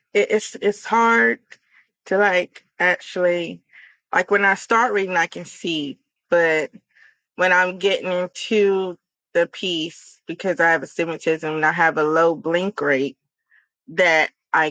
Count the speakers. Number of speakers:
1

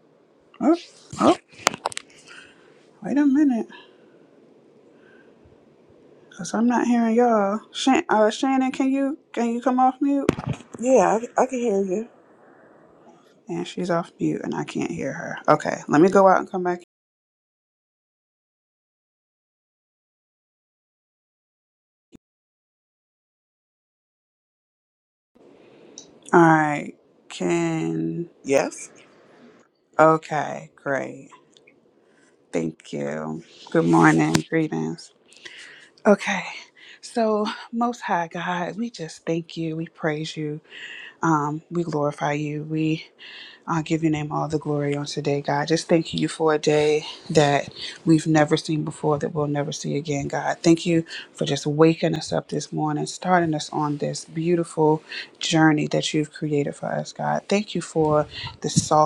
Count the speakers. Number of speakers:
2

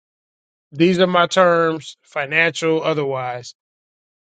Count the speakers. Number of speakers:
1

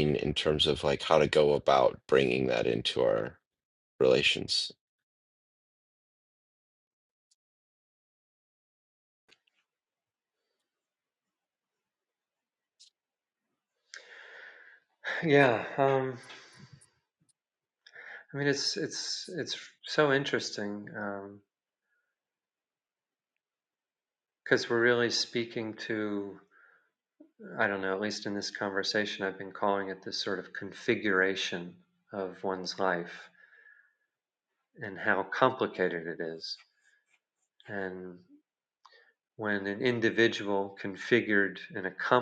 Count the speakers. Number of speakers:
2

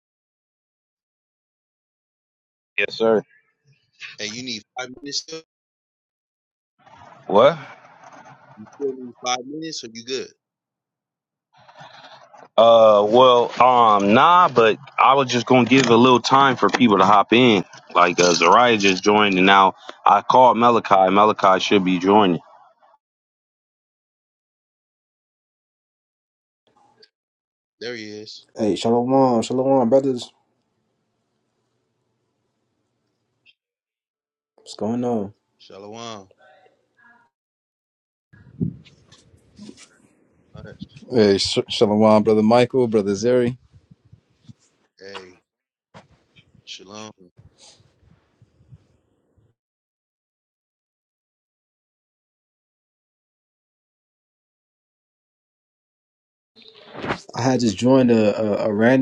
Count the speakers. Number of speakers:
4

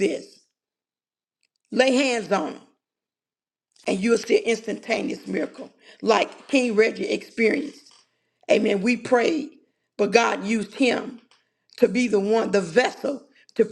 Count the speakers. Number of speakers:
1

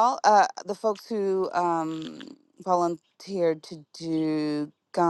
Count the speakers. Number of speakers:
1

